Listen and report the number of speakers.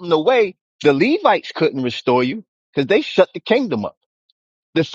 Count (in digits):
1